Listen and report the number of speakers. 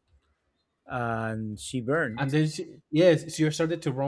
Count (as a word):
two